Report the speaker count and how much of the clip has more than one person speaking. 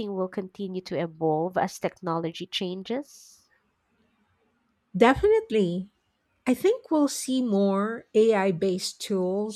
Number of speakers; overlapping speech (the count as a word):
two, no overlap